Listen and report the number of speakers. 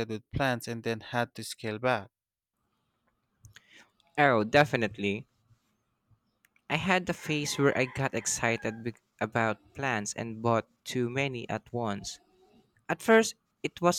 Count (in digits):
2